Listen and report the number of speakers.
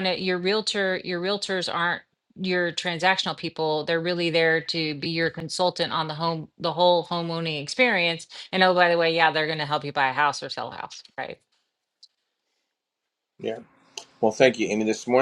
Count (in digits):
2